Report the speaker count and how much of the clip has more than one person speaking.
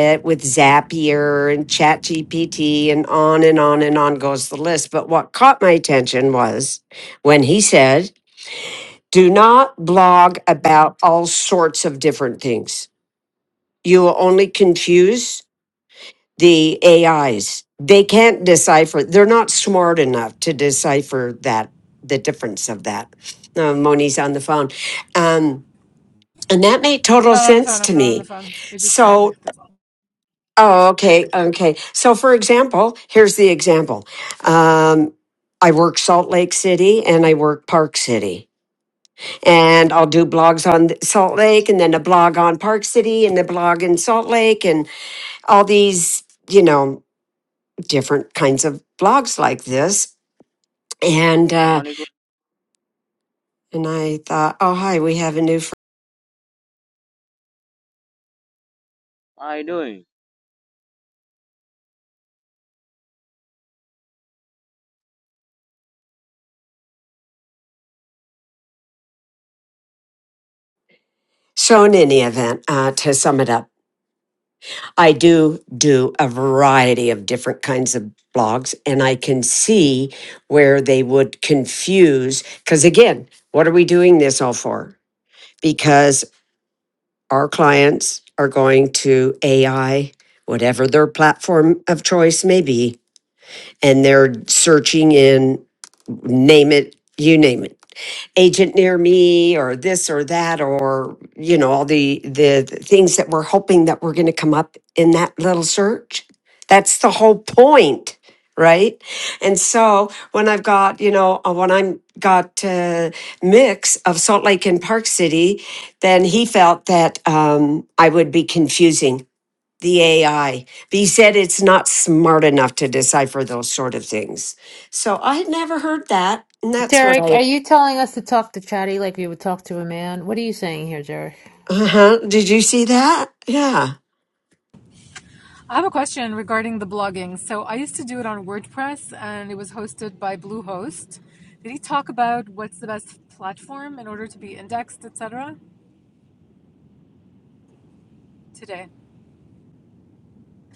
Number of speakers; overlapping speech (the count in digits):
4, about 2%